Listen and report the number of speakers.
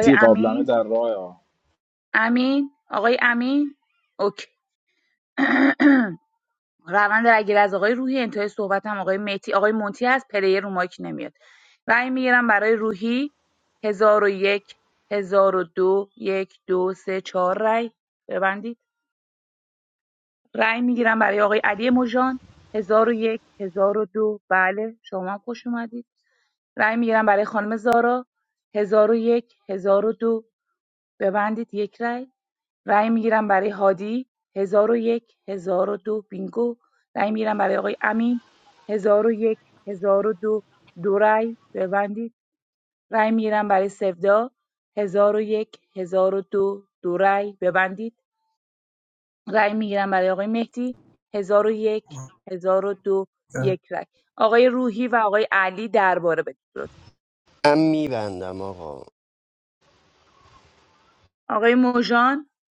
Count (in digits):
3